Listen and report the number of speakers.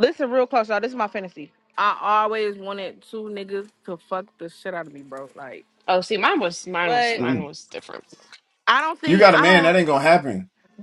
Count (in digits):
3